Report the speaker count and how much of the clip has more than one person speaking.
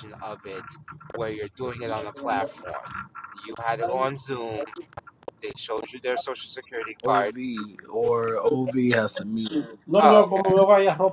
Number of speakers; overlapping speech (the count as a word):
three, about 7%